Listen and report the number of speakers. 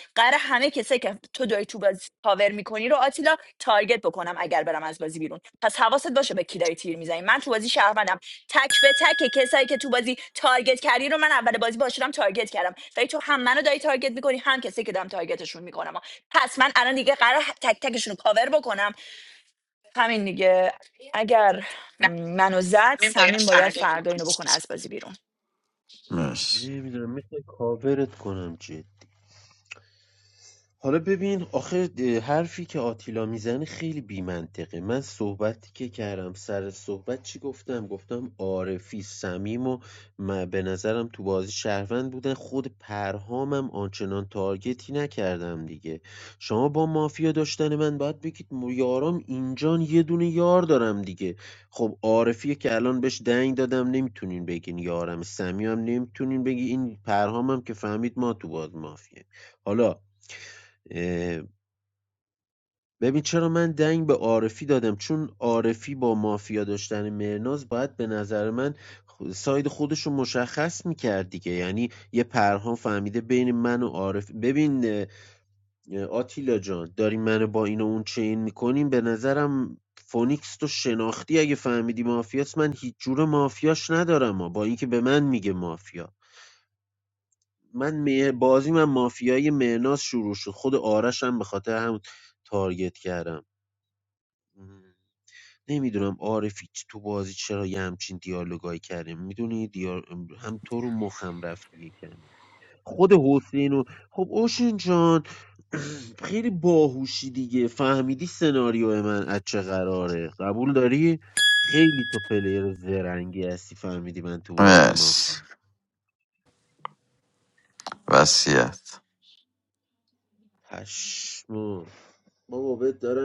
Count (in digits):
3